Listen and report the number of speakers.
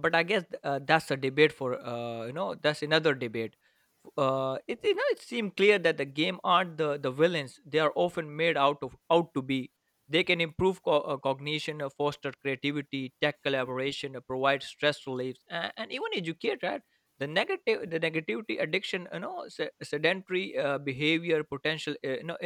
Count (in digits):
1